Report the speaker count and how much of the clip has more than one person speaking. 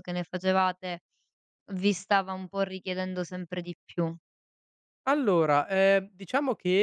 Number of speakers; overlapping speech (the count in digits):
2, no overlap